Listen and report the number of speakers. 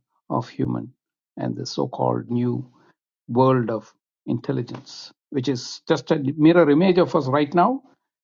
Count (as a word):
one